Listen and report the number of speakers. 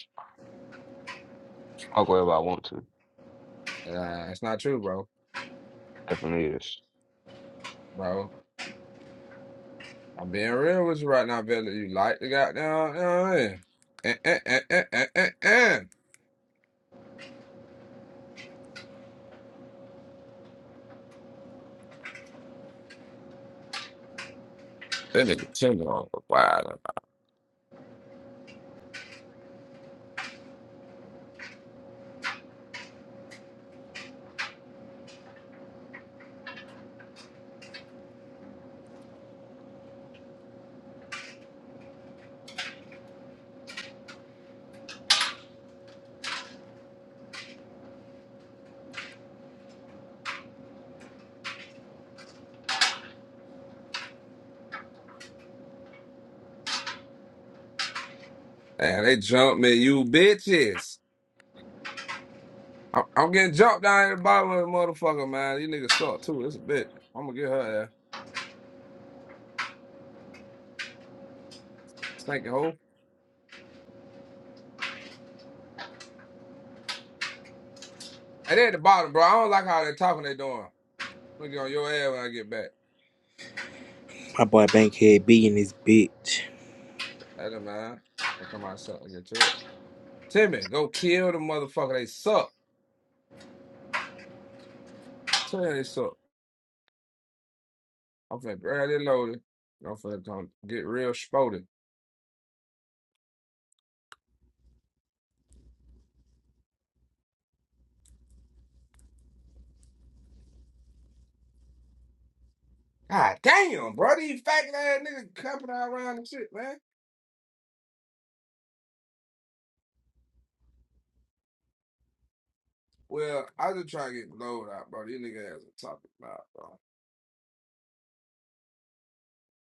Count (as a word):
three